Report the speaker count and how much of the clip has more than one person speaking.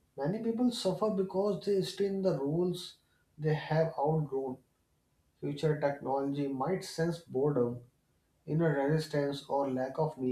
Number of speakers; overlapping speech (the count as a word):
one, no overlap